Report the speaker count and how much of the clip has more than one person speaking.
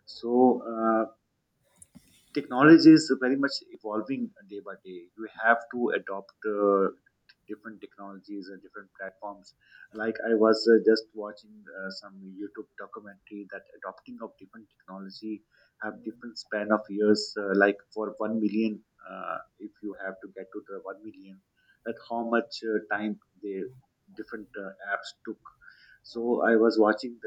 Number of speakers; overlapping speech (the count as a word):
one, no overlap